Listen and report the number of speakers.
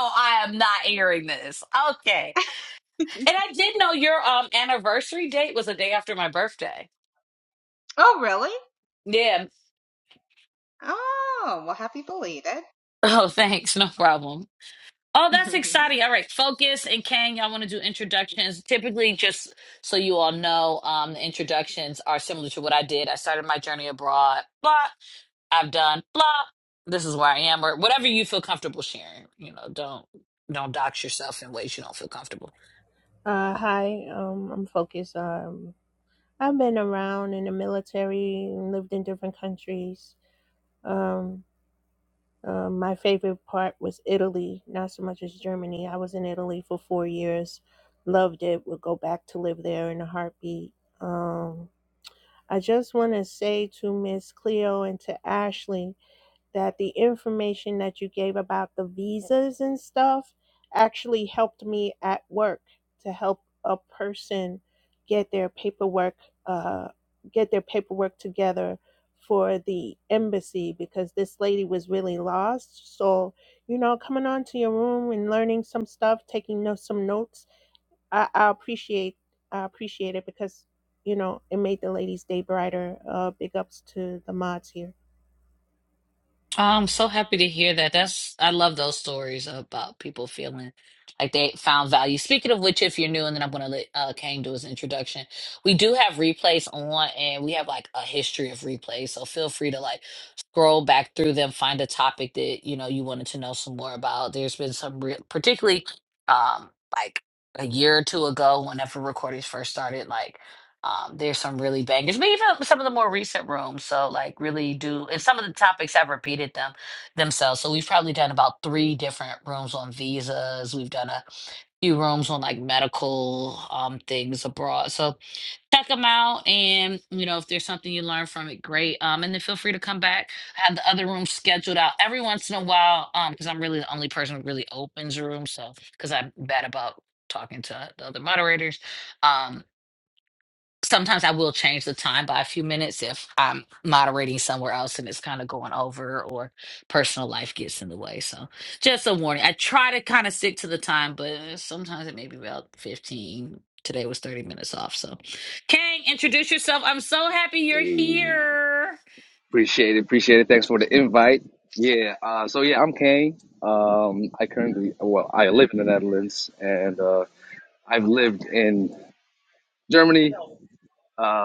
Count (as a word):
four